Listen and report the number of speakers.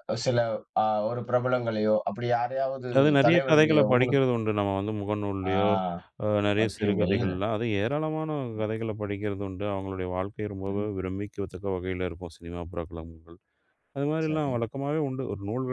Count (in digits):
2